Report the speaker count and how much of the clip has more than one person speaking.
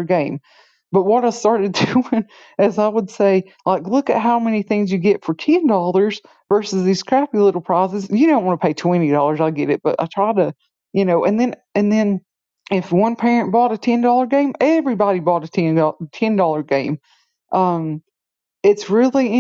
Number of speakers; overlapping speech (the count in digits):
1, no overlap